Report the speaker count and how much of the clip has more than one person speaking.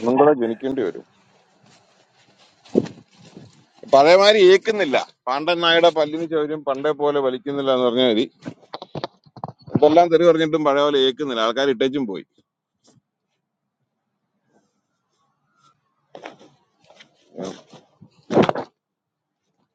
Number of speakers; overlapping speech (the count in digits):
1, no overlap